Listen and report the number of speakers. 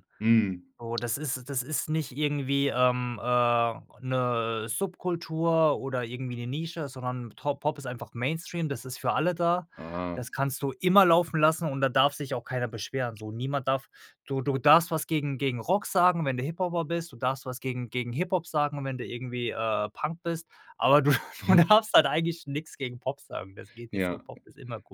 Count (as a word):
two